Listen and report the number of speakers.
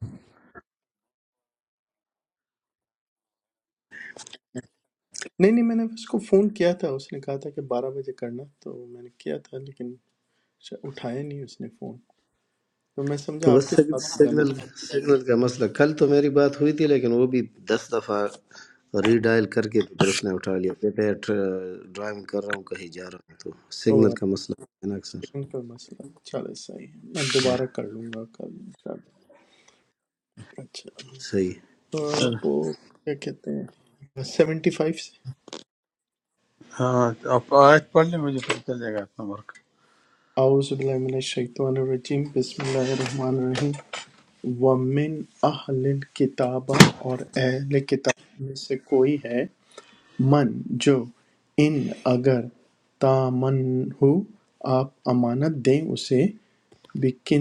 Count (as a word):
three